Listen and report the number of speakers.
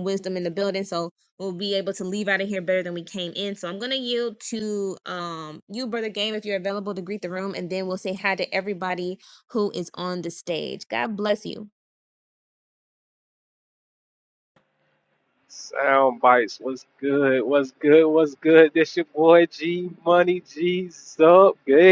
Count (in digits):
2